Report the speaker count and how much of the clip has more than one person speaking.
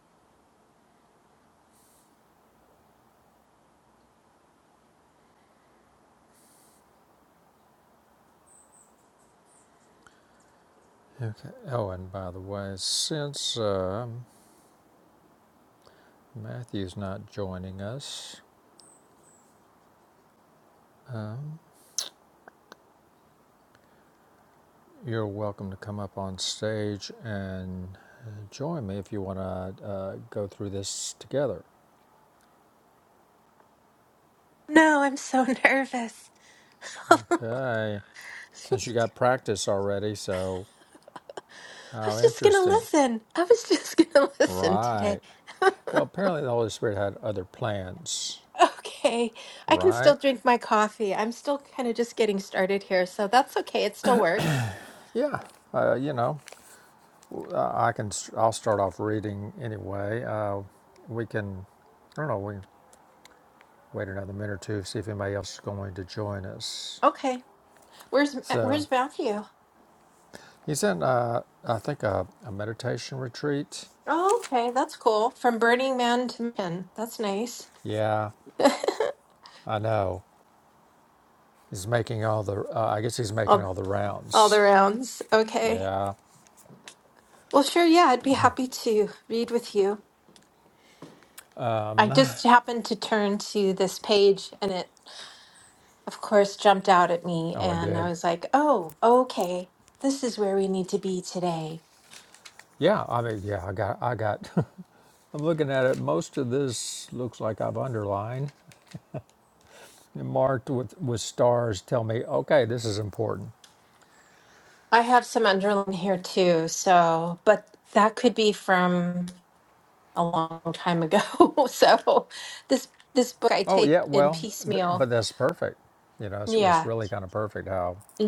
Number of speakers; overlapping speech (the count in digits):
2, about 4%